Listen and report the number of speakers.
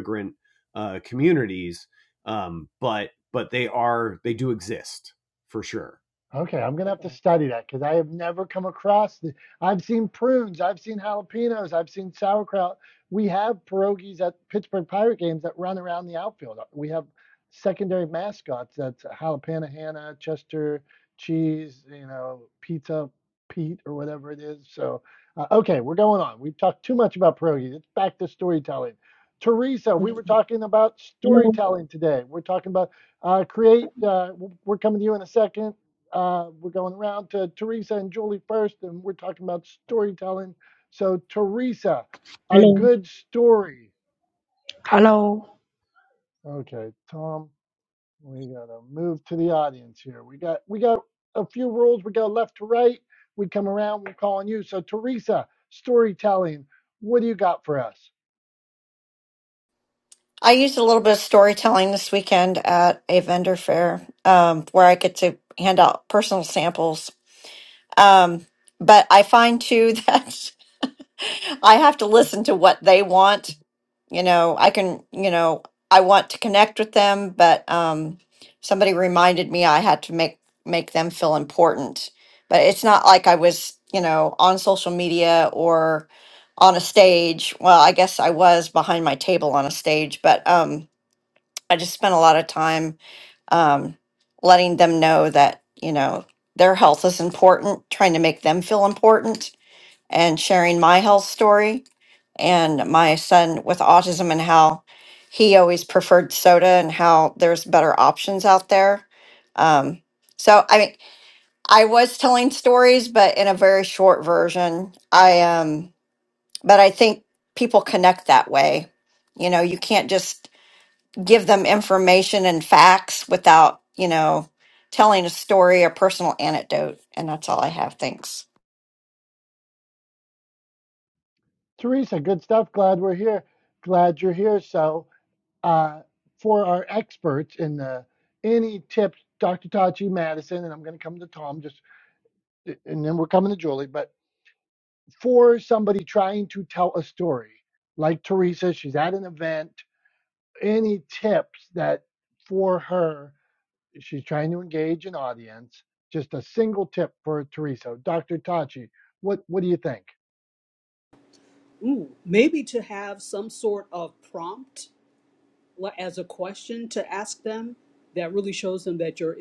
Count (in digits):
5